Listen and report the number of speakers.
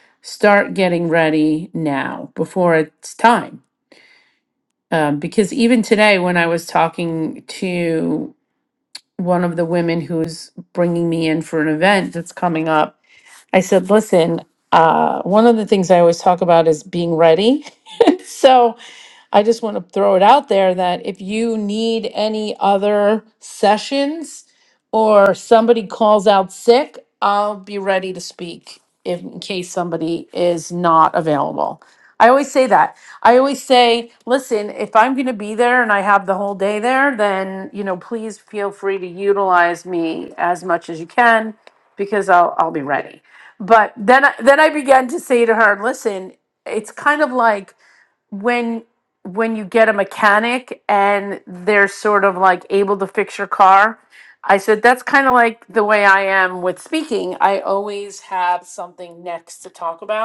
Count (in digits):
1